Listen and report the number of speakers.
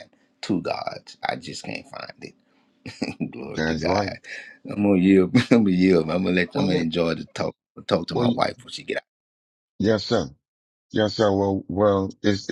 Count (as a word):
two